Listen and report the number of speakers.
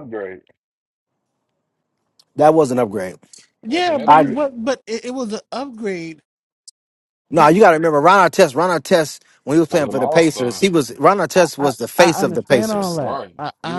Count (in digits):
3